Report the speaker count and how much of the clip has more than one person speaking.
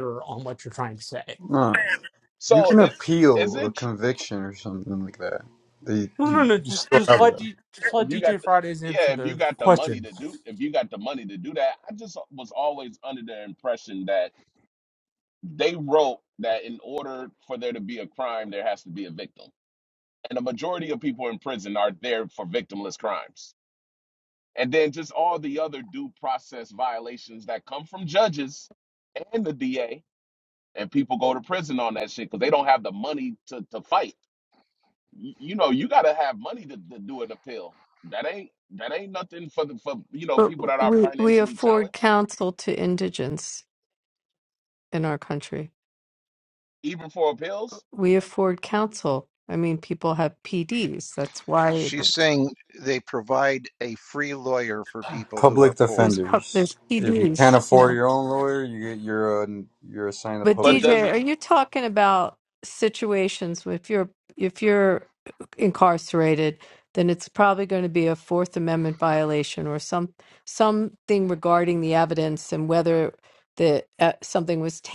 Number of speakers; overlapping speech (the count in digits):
5, about 11%